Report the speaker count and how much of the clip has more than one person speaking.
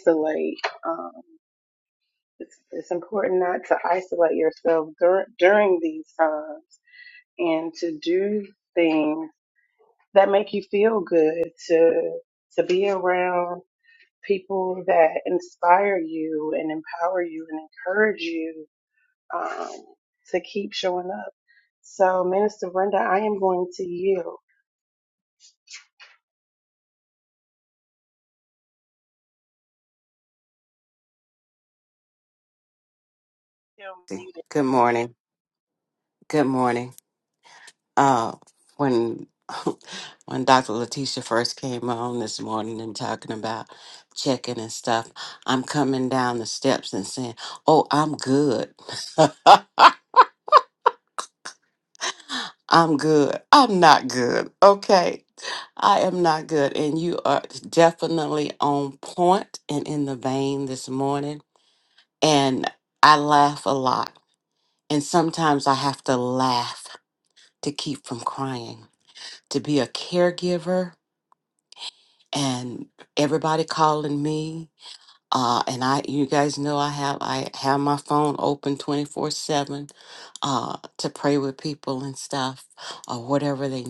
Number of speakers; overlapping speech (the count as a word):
two, no overlap